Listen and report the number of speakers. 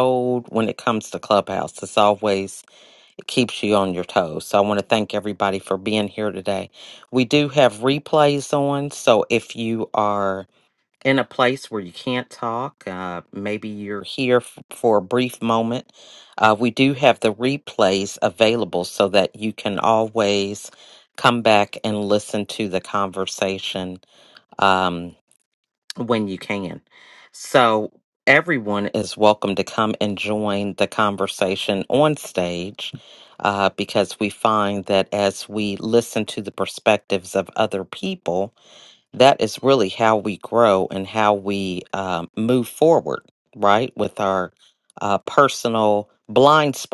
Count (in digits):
1